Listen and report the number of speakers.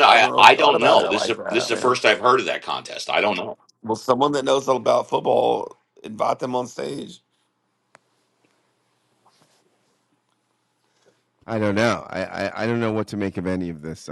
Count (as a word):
three